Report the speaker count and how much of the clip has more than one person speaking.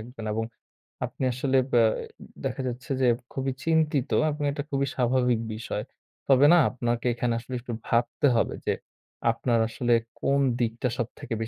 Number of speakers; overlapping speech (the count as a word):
one, no overlap